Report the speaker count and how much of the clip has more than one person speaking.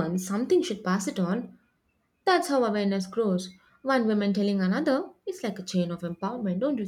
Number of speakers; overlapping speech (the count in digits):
1, no overlap